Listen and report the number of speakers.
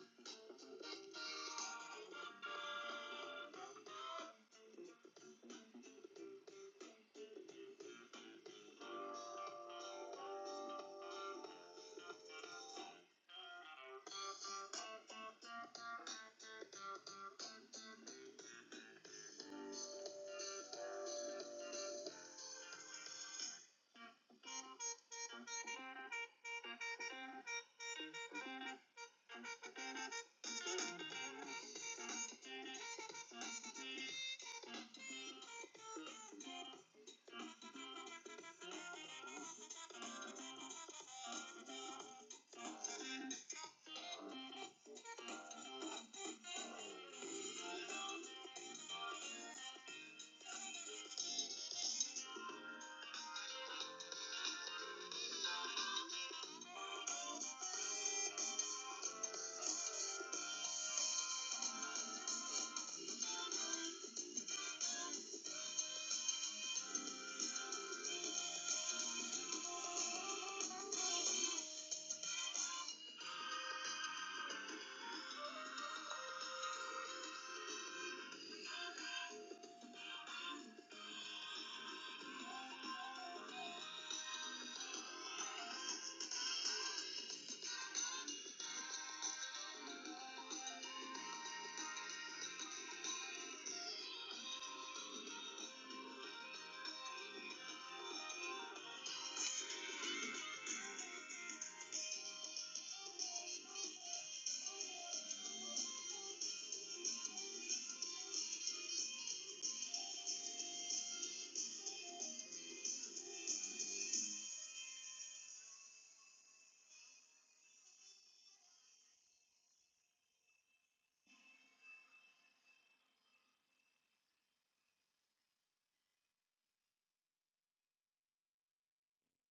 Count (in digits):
0